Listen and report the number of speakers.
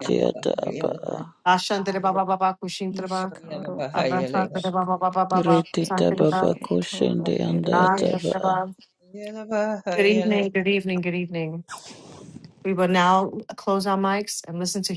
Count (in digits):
4